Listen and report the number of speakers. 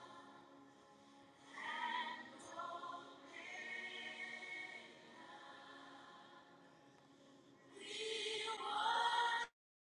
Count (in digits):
0